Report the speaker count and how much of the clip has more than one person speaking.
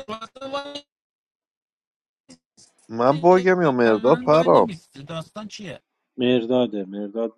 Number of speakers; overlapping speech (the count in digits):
3, about 14%